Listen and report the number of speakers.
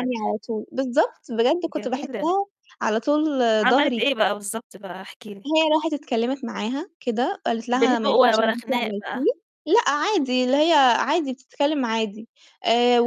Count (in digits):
2